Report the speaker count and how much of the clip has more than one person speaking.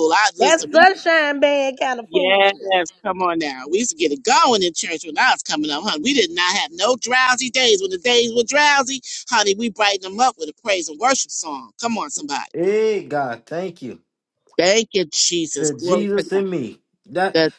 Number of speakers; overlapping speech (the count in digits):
3, about 11%